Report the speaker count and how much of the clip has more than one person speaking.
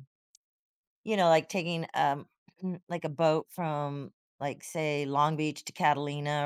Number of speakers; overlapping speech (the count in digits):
1, no overlap